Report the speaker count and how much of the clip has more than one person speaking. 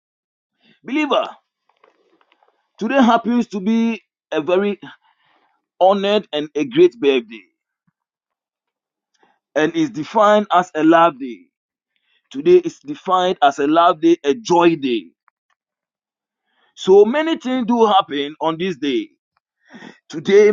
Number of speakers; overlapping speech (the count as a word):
one, no overlap